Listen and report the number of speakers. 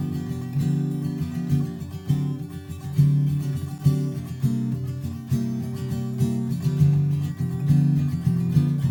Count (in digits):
0